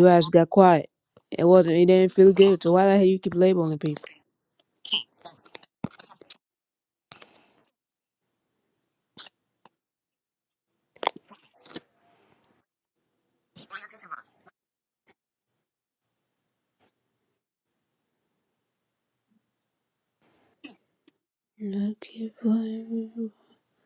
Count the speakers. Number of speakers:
1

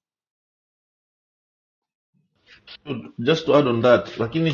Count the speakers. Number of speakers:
1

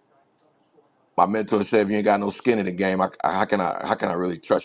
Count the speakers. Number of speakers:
1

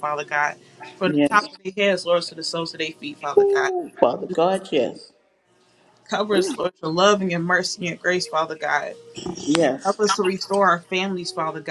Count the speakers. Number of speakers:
2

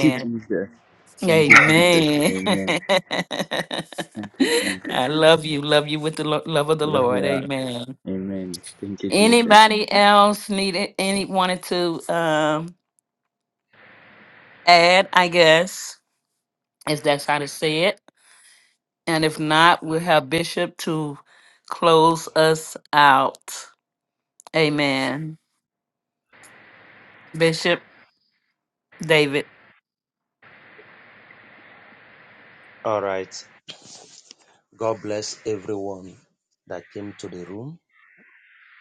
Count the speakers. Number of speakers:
3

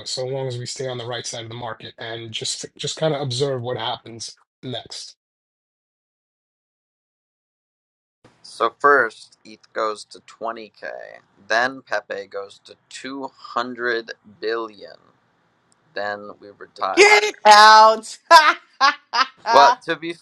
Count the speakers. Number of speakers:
3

